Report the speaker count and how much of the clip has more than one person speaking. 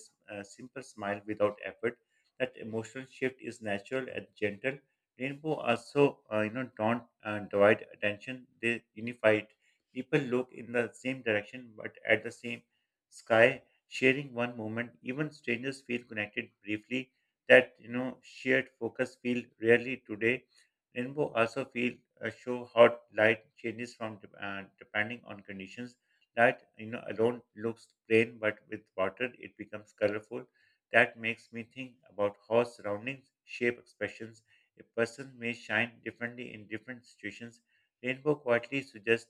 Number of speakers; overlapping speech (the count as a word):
one, no overlap